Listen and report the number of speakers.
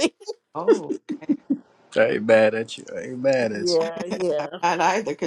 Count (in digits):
3